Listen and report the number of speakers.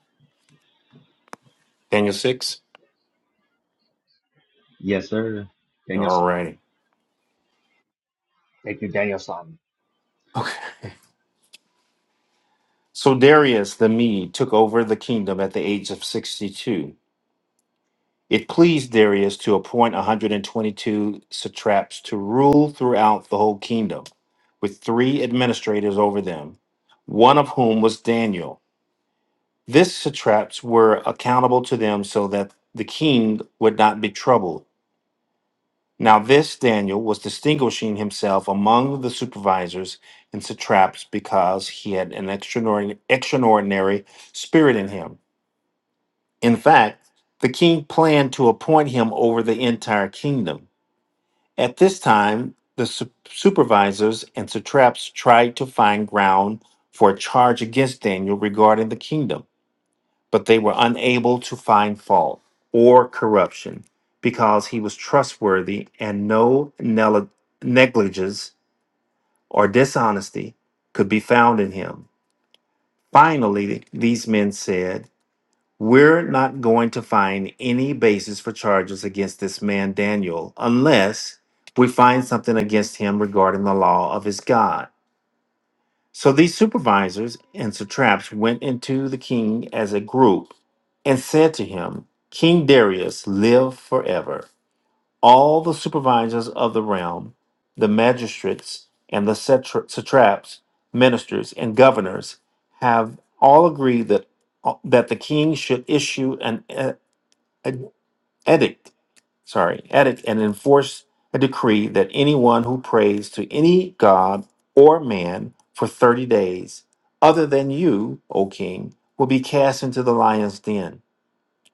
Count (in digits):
2